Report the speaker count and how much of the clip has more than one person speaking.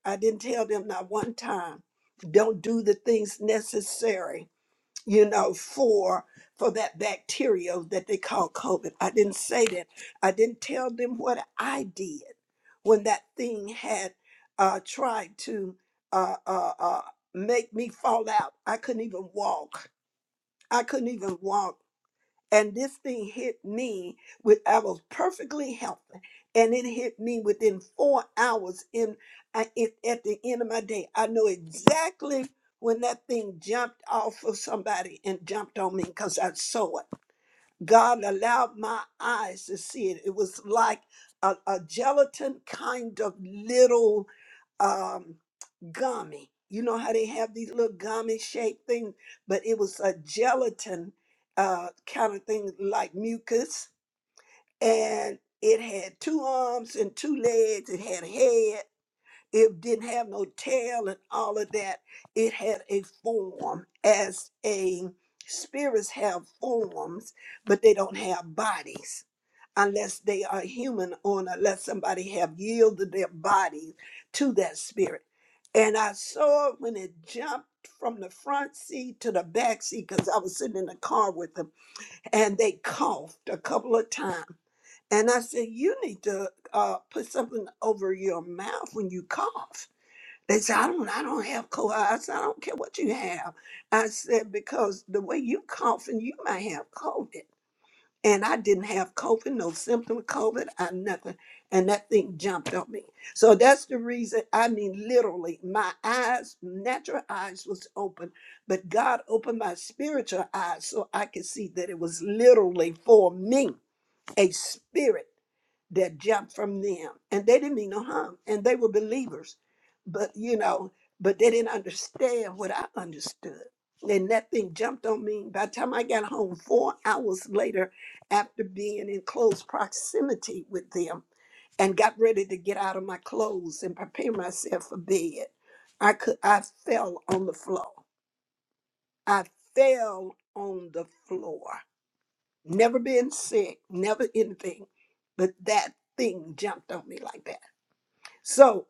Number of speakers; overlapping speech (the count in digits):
1, no overlap